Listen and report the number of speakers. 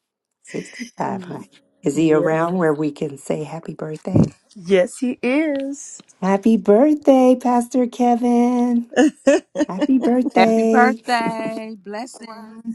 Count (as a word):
three